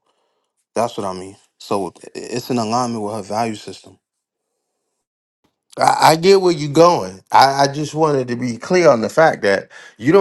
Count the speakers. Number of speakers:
two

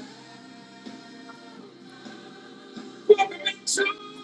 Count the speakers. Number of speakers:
zero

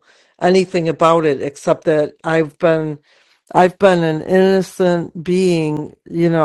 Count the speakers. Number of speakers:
one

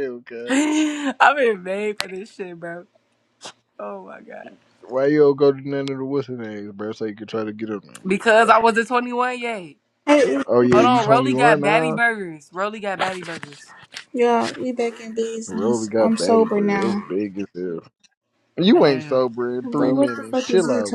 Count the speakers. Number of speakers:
three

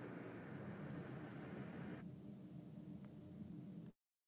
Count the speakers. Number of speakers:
zero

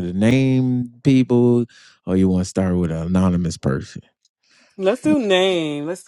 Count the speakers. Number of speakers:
two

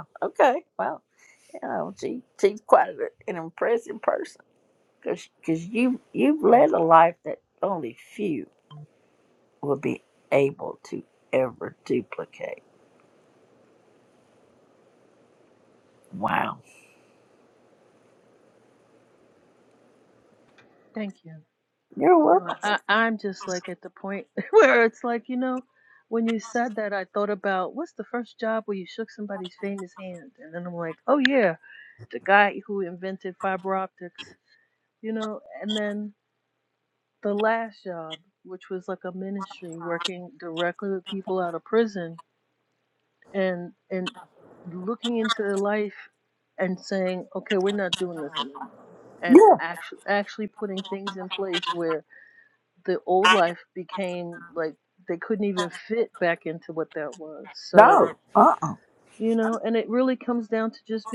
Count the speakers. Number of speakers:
two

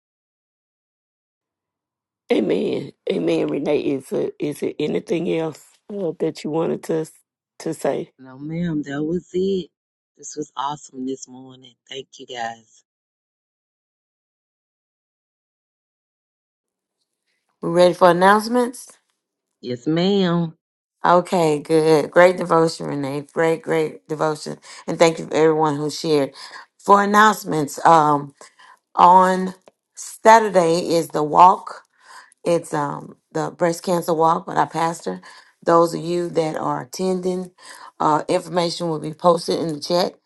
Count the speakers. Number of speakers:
three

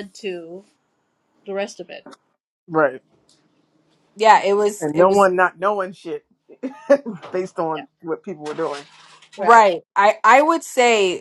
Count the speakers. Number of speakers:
three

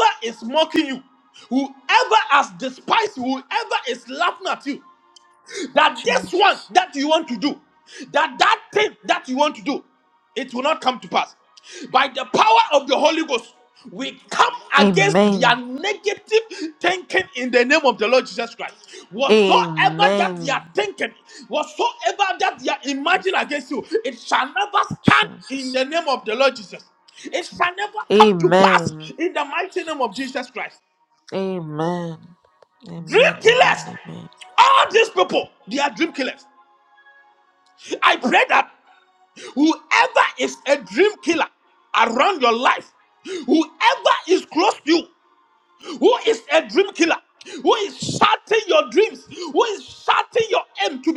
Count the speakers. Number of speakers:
two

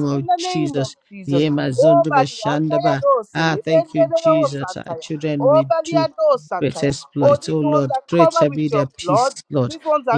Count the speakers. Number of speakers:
two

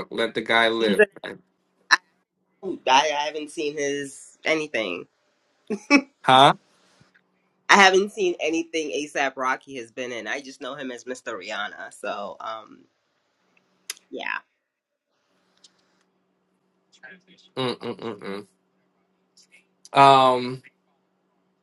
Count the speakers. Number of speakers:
two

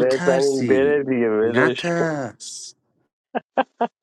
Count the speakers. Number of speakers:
two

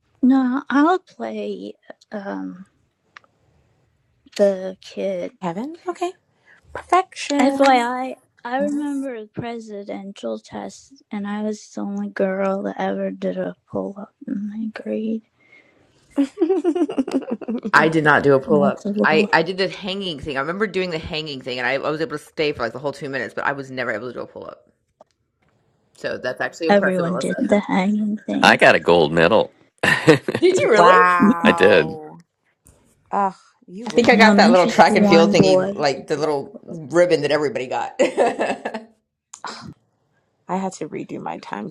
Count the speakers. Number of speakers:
four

